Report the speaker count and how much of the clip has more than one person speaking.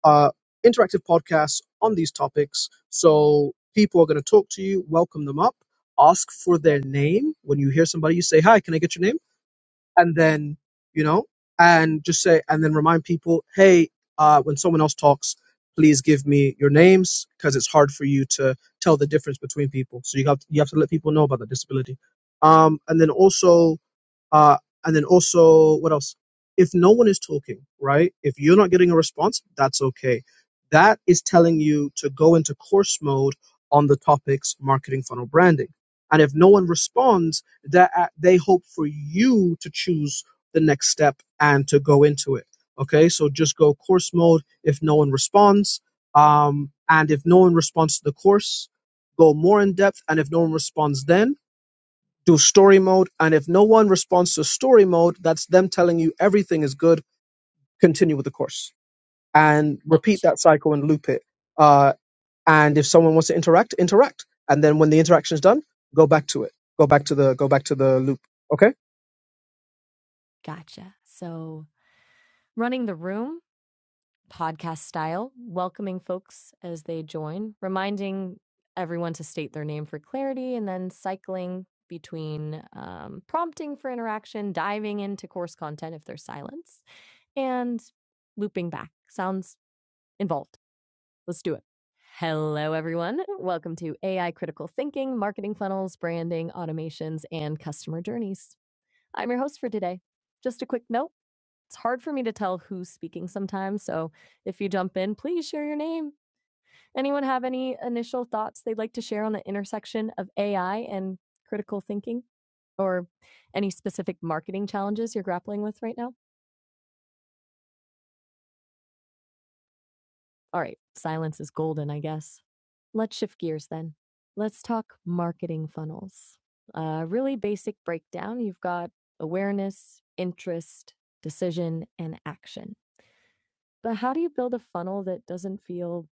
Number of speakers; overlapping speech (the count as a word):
two, under 1%